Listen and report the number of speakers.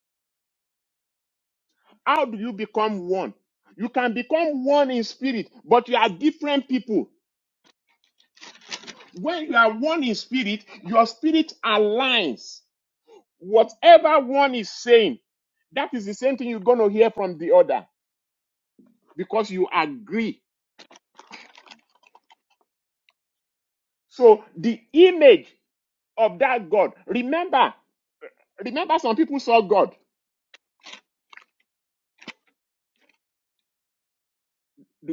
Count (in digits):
1